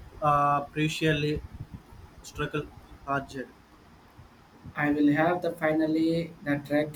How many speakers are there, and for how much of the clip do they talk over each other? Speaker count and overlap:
two, no overlap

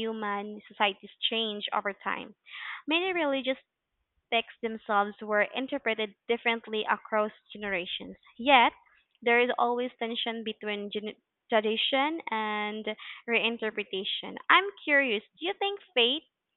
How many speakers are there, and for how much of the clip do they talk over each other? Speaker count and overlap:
one, no overlap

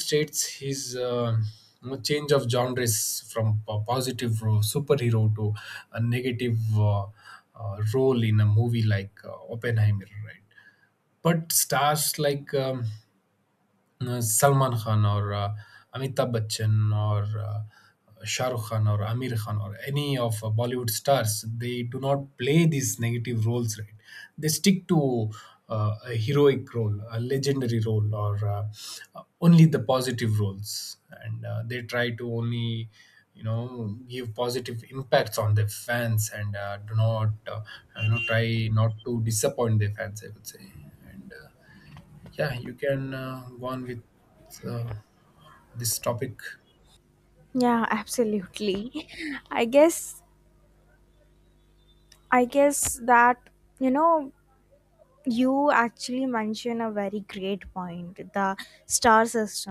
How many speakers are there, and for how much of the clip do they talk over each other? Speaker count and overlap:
two, no overlap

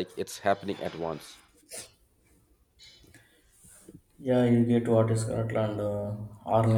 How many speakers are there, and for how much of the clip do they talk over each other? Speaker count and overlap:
two, no overlap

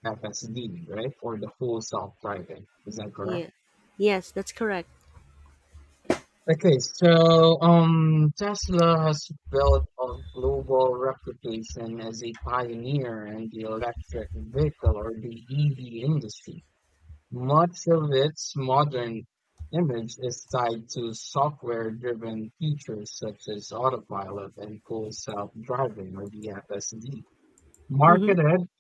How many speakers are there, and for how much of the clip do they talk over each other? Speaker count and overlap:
two, about 2%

